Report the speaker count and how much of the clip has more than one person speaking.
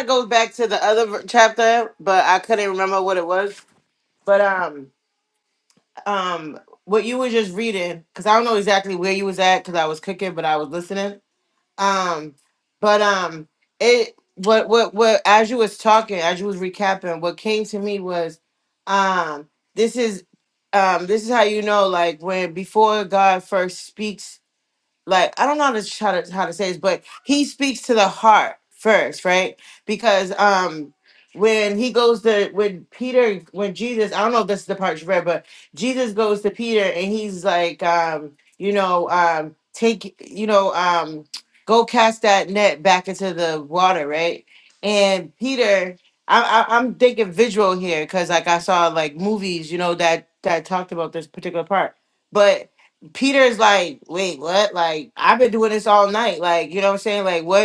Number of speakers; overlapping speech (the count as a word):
one, no overlap